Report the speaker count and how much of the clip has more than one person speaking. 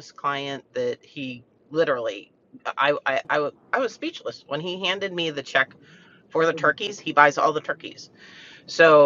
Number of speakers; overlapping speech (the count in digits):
1, no overlap